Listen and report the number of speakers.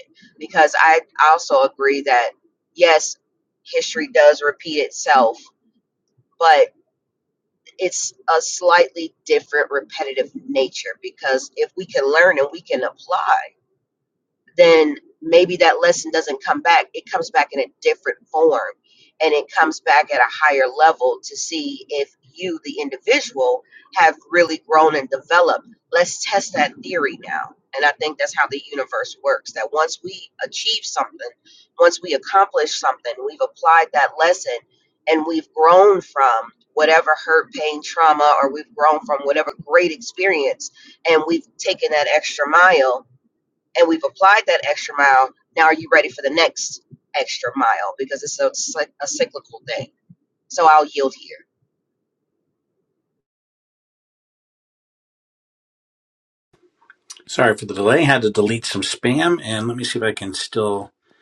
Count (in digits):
2